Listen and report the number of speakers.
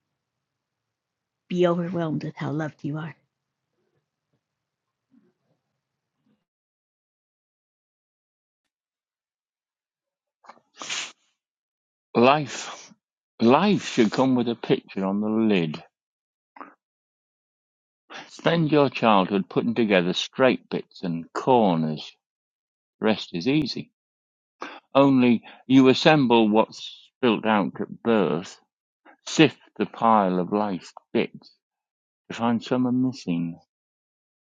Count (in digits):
2